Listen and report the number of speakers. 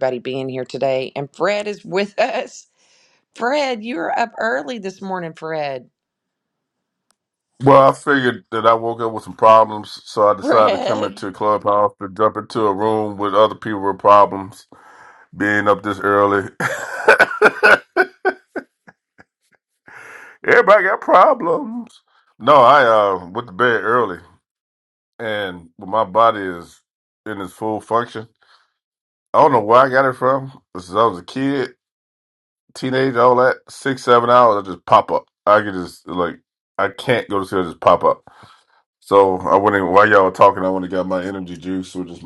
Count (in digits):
2